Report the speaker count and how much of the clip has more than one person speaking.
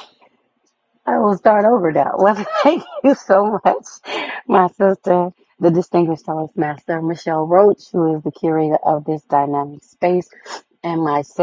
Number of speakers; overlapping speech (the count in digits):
1, no overlap